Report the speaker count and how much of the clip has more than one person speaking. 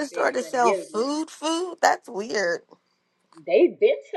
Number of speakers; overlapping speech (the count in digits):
2, about 27%